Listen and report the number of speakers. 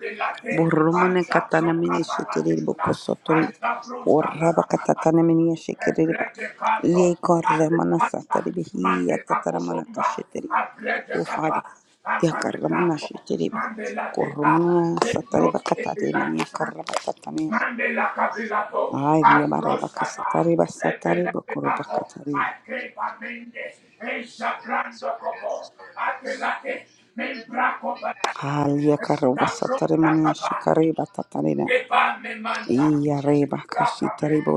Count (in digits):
2